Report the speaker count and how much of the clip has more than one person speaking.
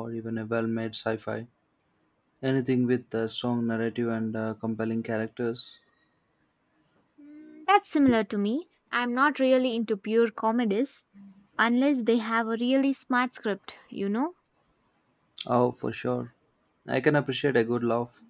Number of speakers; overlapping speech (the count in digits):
2, no overlap